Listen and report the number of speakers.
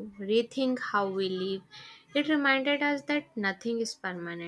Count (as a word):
one